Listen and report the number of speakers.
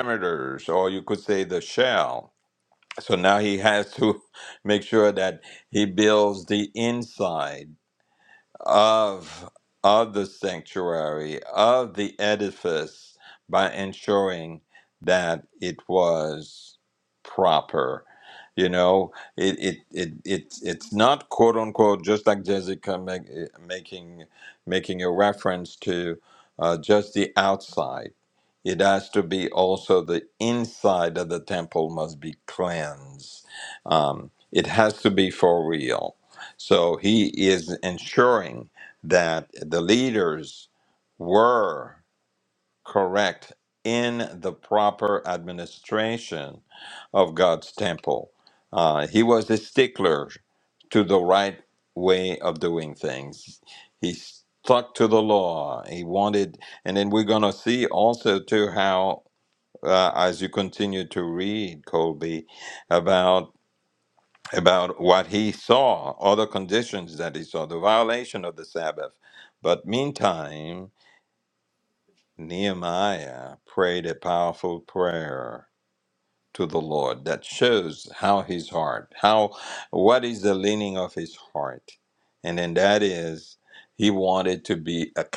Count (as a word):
one